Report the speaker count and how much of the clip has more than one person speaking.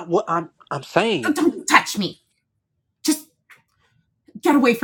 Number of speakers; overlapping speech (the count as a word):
two, about 2%